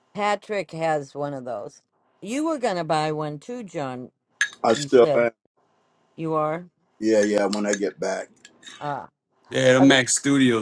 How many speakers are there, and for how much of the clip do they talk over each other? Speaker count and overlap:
3, about 6%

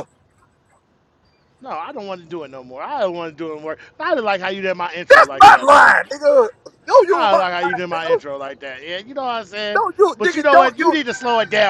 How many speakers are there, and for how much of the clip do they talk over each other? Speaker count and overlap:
2, about 23%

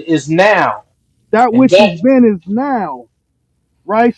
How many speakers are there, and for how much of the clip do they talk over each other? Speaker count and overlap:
2, about 10%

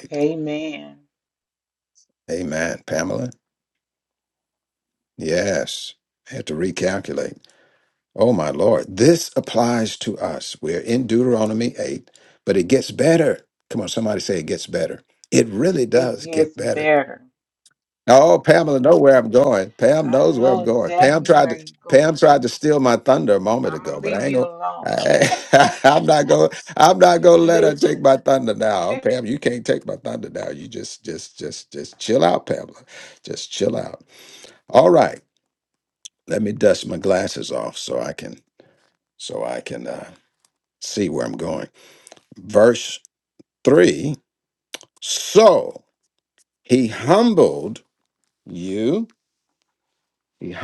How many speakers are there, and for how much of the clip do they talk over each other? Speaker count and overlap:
2, about 10%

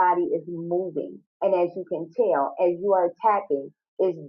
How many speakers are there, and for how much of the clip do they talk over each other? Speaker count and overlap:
1, no overlap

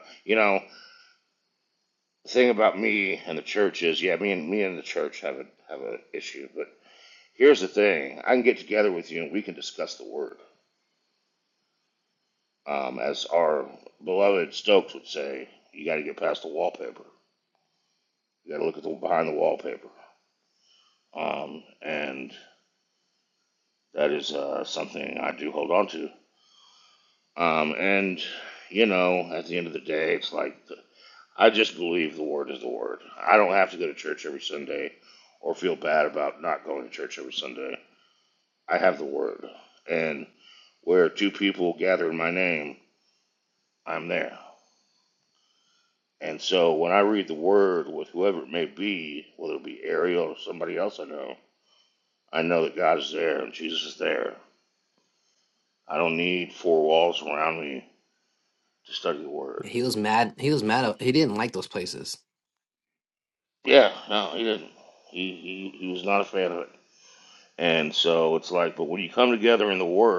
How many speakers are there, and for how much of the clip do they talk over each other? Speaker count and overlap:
2, under 1%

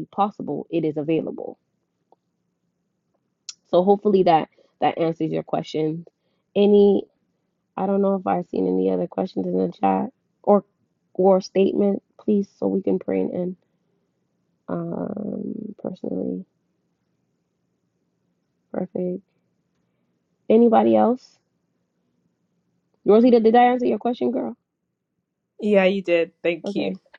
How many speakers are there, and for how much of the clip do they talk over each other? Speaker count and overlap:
2, about 1%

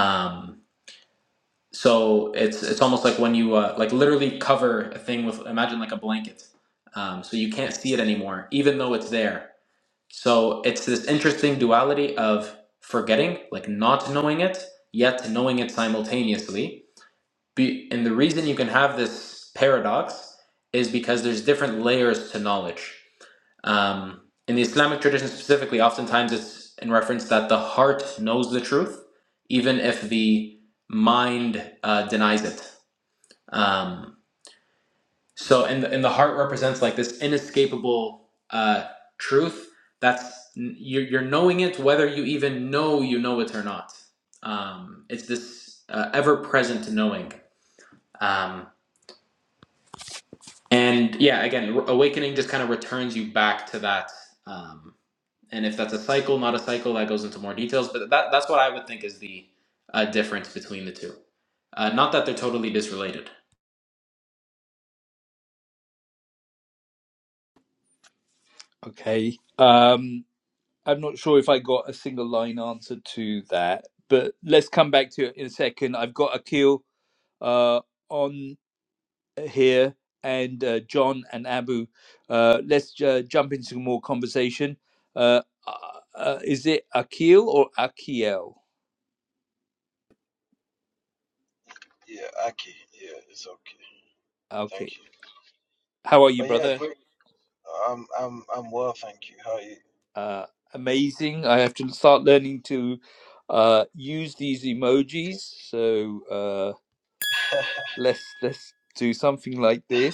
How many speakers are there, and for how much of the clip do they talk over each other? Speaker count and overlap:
3, about 1%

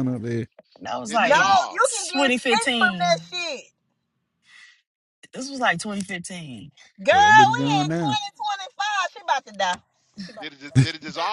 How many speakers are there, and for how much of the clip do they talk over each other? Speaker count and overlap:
4, about 27%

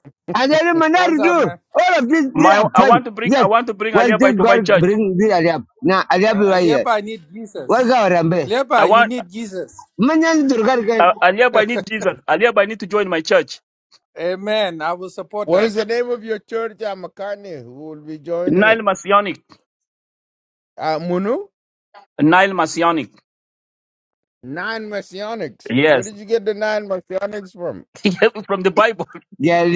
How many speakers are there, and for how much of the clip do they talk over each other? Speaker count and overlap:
4, about 15%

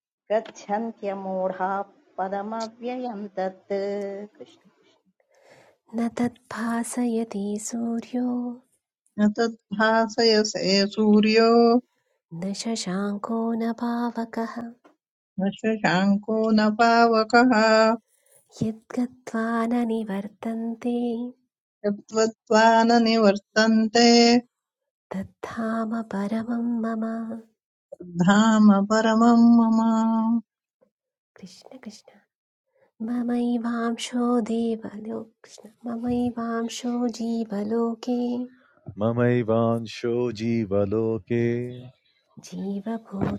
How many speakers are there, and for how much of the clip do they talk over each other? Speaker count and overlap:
4, no overlap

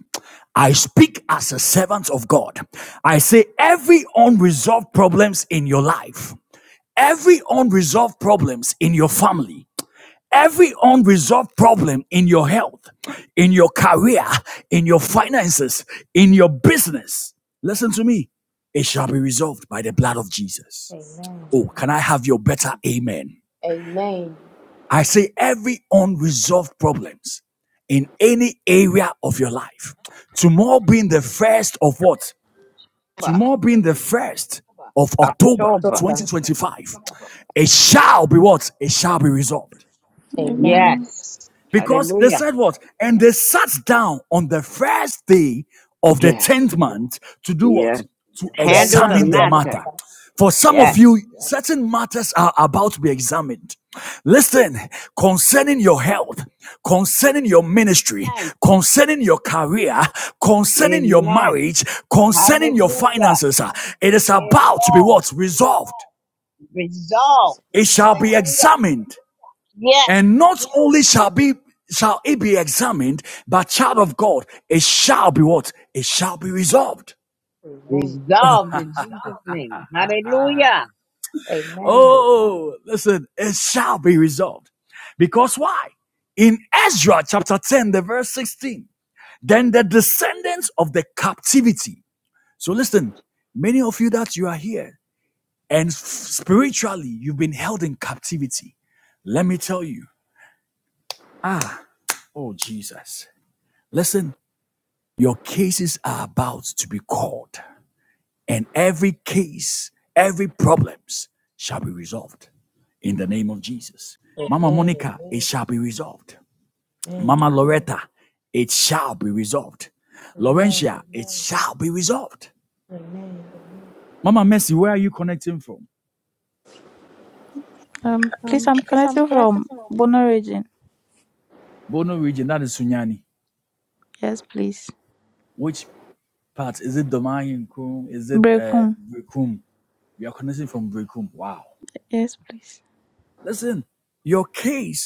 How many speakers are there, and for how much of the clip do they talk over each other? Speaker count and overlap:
4, about 7%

